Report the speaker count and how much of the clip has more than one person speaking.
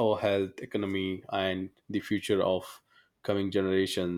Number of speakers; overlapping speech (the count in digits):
1, no overlap